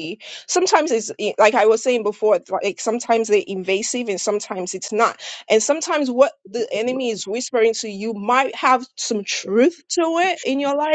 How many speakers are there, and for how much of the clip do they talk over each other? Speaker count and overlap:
1, no overlap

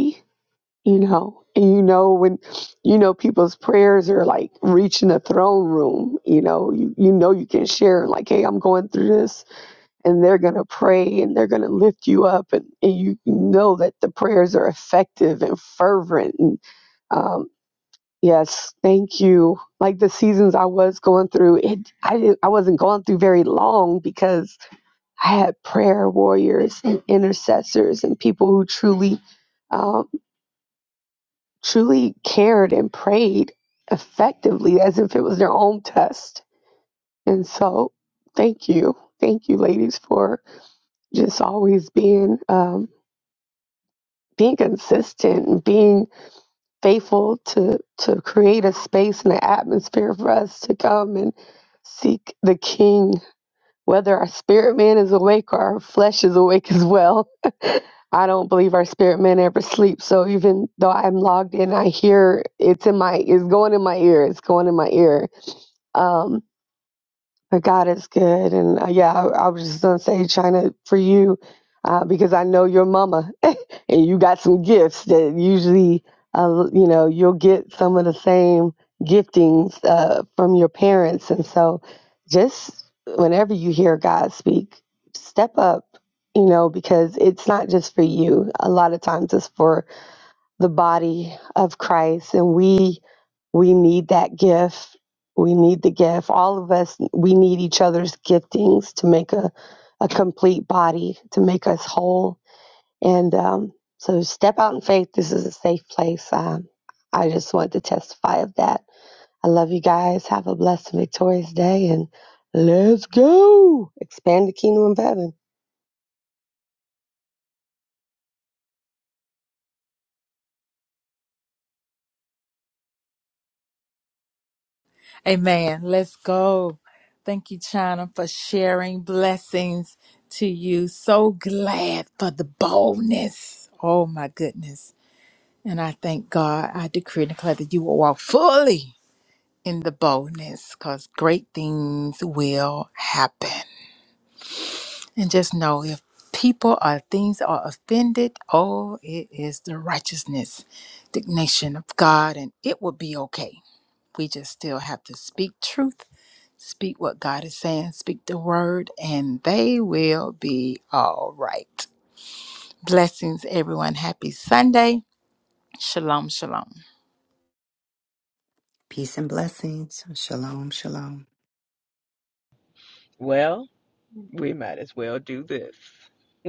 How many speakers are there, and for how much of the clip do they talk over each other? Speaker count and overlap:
4, no overlap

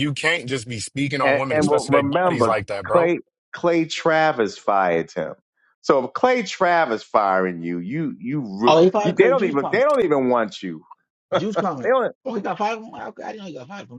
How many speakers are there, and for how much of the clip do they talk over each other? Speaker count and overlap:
3, about 22%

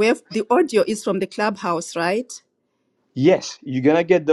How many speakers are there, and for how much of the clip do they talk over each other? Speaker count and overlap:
2, no overlap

